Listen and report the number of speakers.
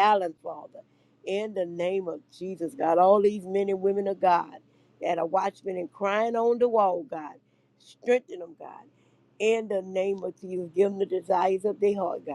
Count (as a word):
one